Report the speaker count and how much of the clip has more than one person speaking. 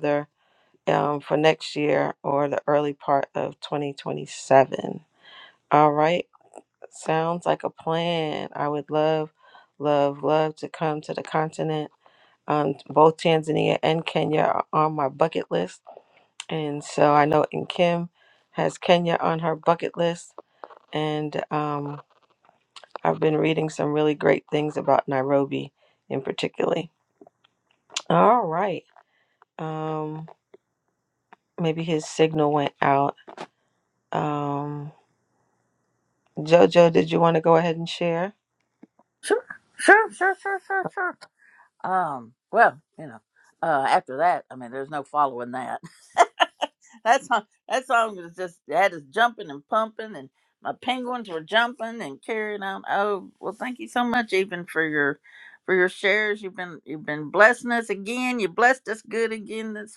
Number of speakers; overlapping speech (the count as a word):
two, no overlap